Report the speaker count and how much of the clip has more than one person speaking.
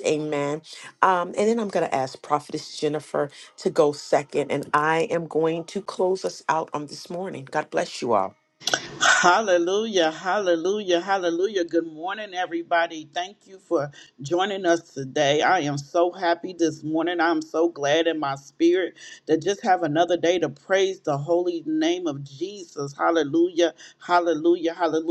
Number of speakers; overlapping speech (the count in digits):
2, no overlap